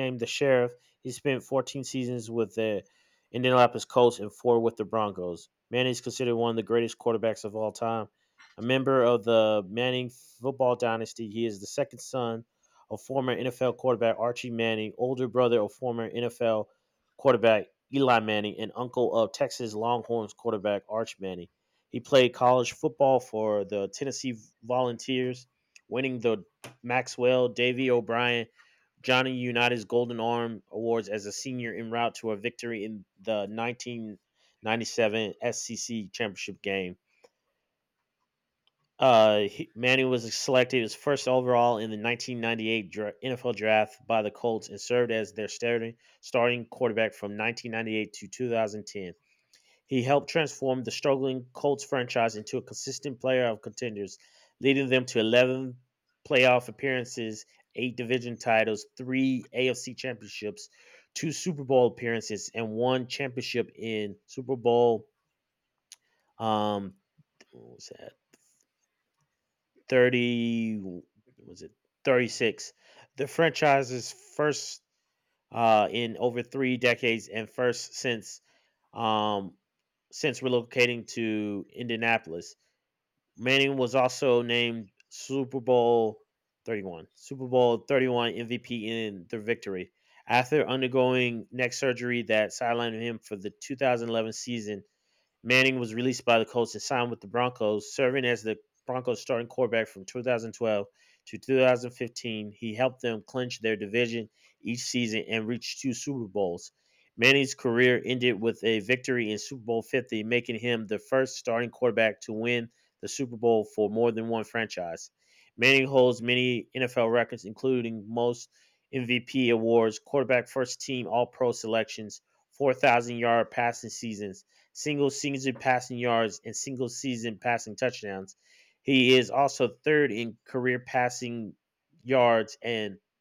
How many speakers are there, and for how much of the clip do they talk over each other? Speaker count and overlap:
1, no overlap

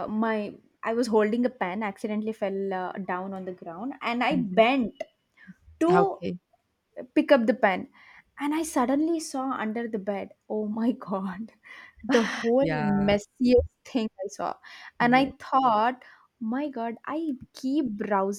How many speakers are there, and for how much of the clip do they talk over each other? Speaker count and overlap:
2, about 8%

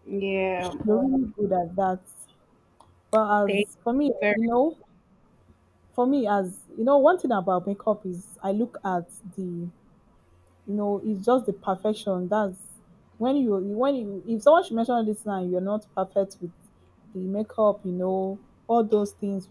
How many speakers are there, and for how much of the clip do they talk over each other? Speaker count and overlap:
2, about 2%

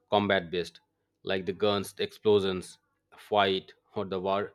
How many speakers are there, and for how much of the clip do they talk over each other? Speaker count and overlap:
1, no overlap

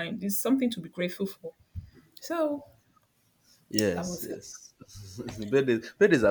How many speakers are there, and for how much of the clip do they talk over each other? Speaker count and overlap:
2, about 7%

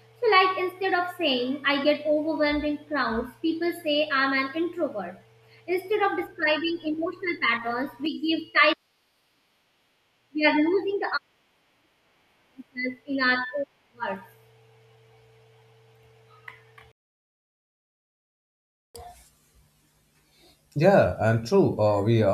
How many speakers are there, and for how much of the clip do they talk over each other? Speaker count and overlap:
2, no overlap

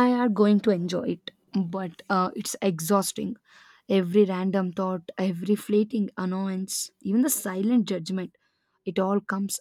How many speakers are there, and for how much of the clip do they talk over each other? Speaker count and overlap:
1, no overlap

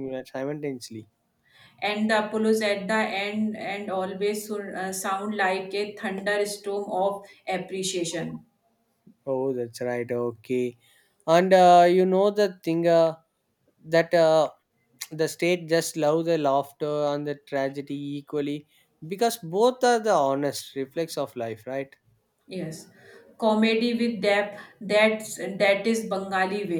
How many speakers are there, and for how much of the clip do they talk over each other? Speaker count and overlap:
2, no overlap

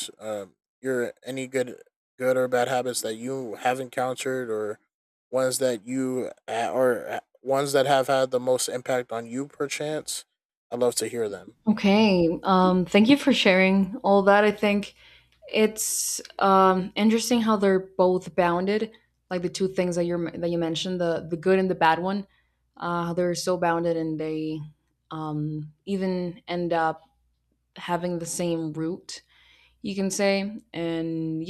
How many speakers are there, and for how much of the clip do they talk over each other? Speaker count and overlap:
2, no overlap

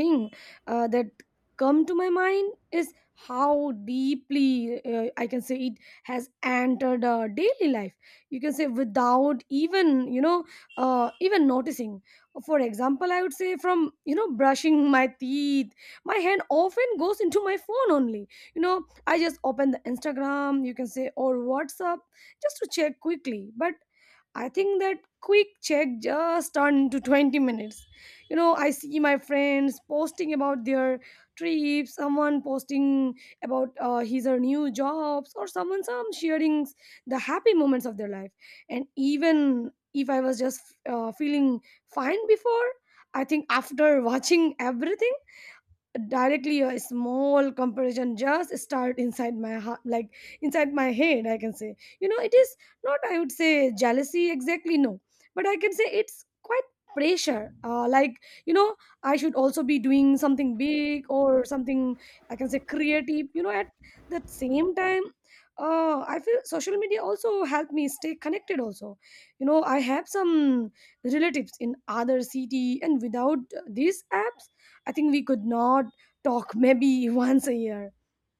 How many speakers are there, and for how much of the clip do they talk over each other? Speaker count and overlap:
1, no overlap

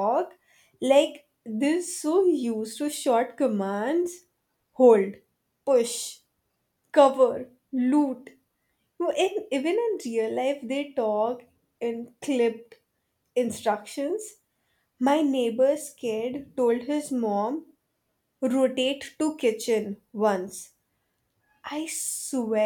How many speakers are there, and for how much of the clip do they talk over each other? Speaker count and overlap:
1, no overlap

